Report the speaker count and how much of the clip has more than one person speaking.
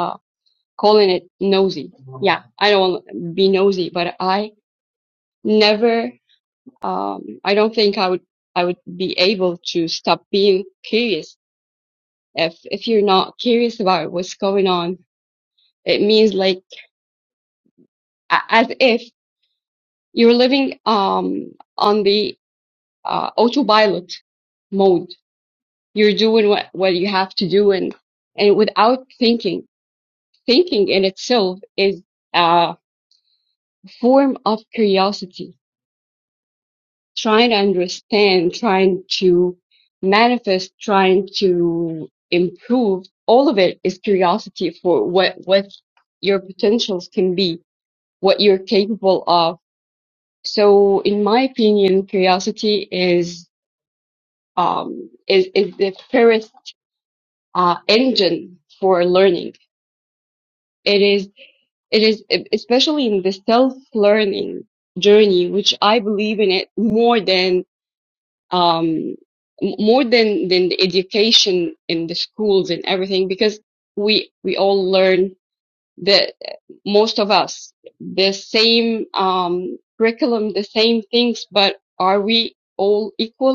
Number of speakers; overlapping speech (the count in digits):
1, no overlap